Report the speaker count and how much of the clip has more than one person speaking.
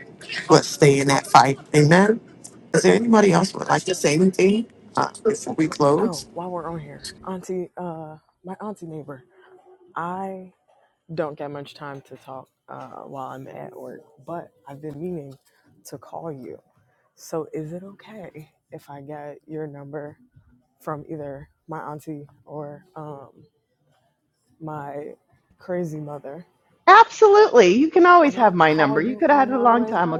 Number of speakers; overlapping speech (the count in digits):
3, about 7%